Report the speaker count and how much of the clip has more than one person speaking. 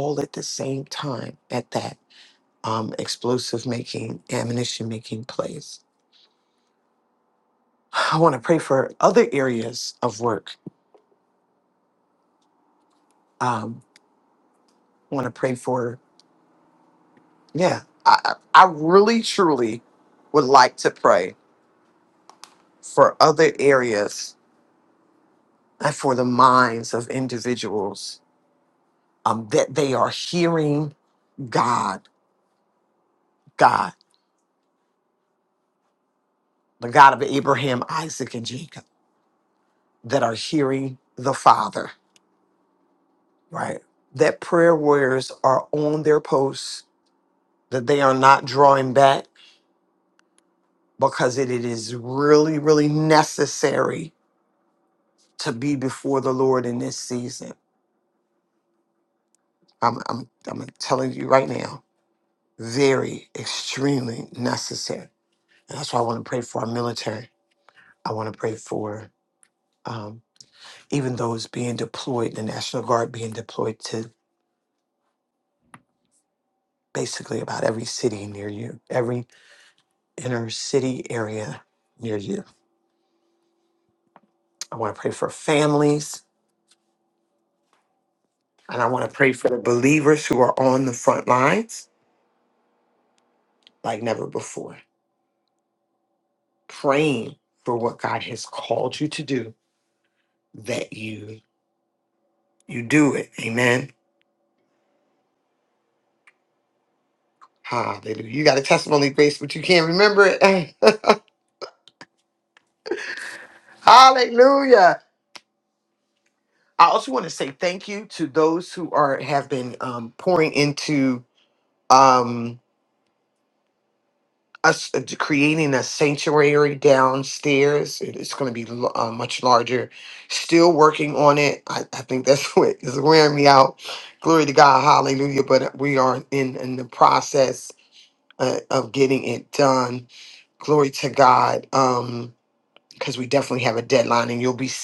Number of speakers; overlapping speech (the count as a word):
one, no overlap